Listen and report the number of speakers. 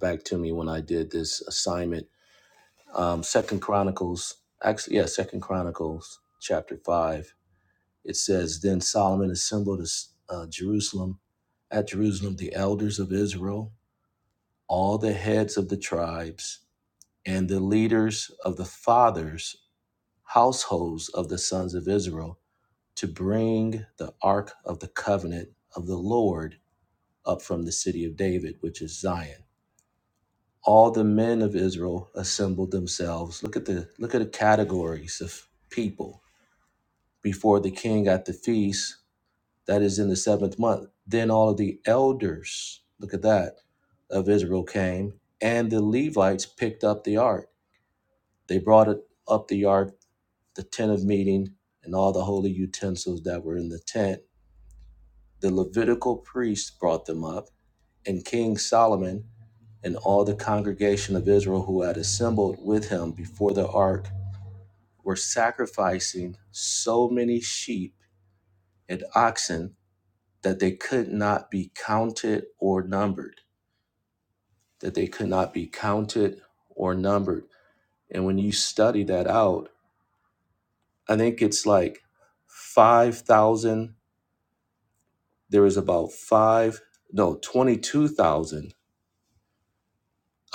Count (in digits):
1